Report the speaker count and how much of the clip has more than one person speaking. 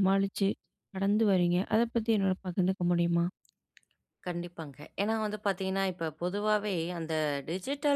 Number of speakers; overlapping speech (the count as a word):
two, no overlap